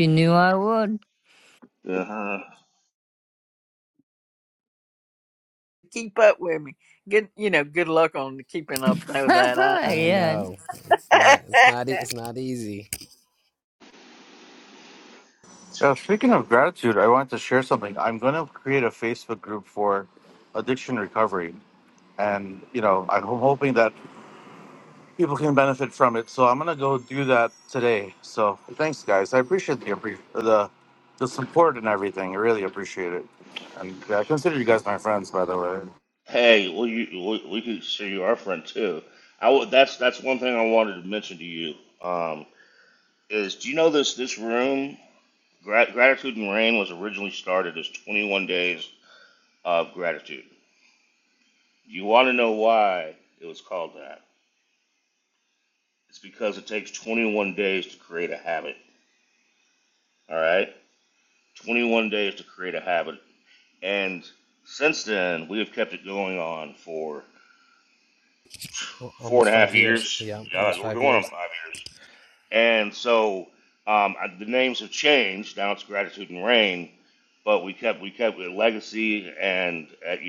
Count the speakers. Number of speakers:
5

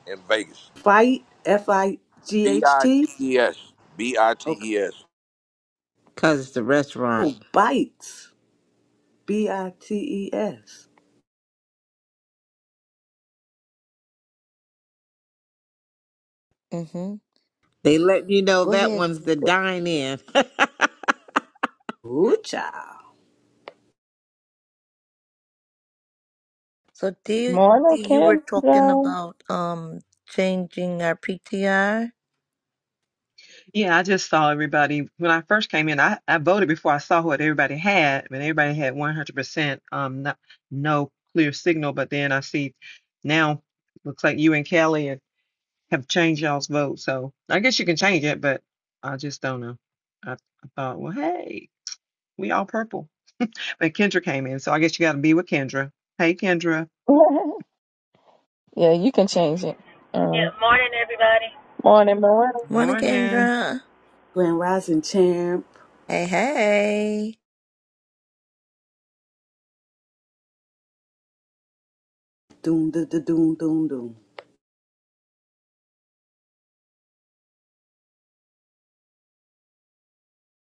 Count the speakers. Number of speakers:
7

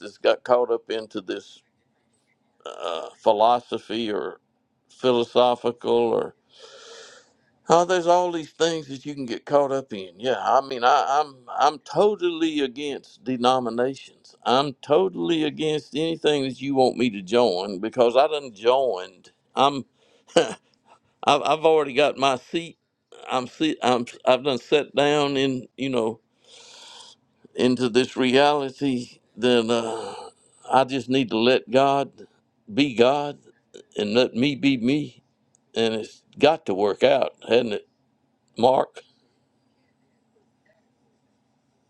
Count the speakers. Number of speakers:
1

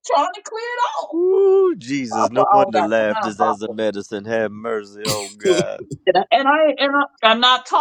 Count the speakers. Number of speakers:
2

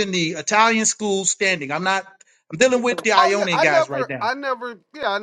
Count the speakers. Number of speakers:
2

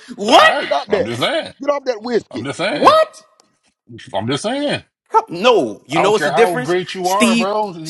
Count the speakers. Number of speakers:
3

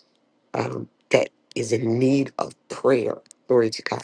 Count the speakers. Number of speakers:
1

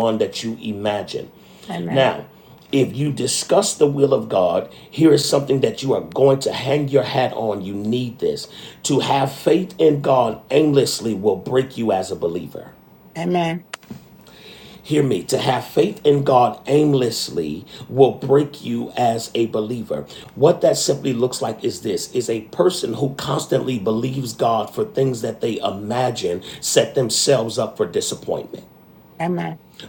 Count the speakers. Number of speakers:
2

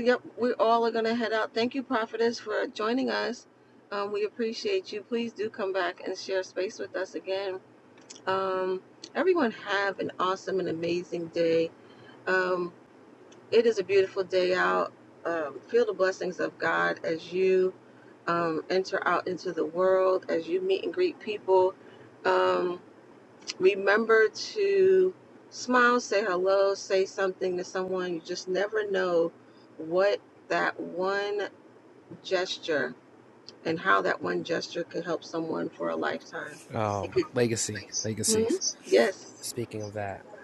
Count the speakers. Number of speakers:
2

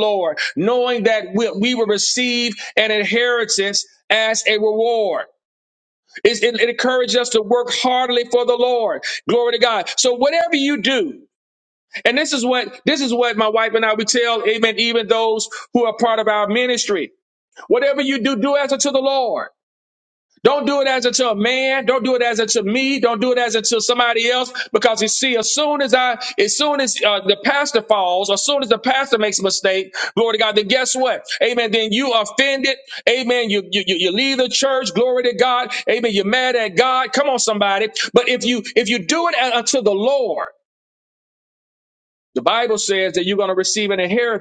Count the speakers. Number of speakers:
1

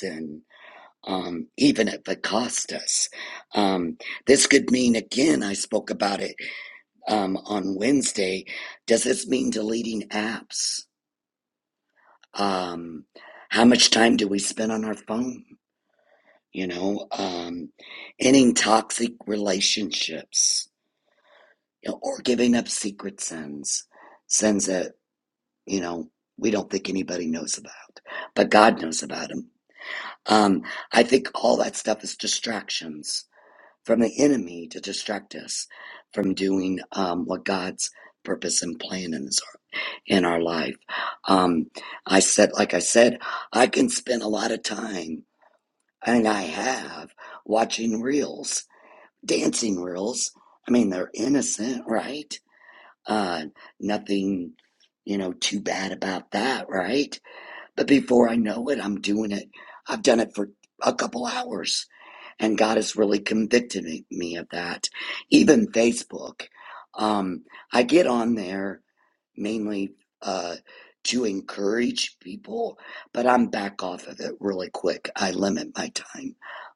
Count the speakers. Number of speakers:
1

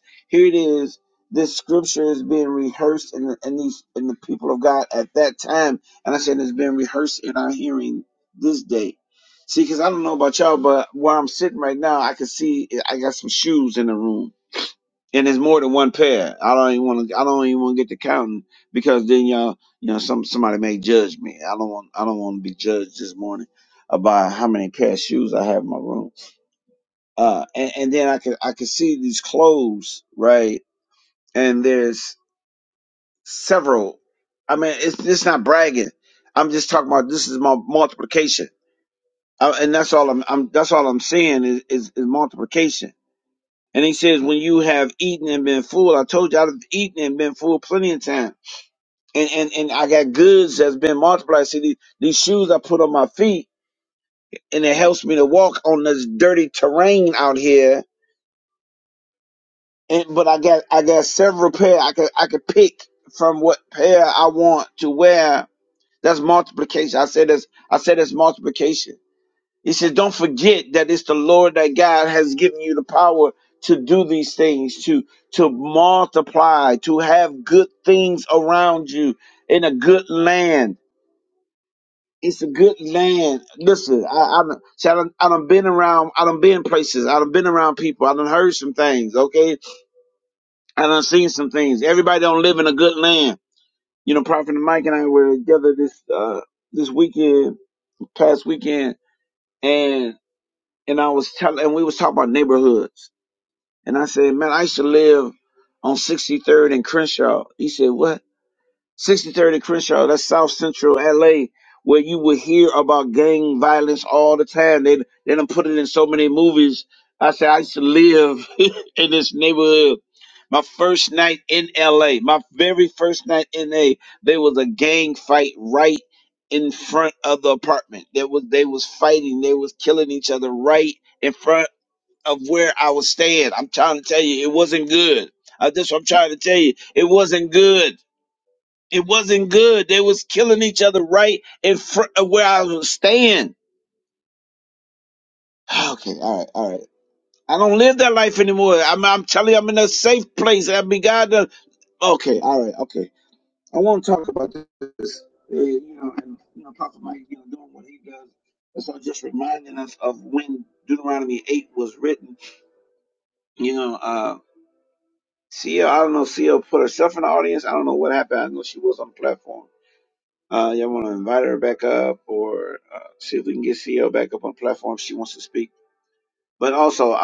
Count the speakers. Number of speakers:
1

